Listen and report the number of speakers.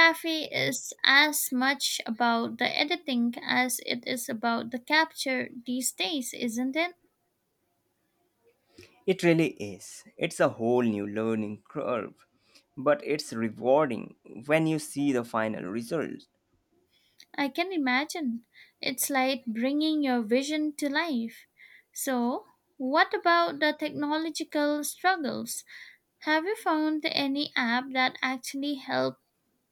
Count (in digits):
2